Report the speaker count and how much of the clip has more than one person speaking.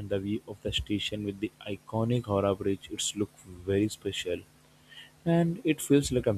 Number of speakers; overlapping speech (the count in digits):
1, no overlap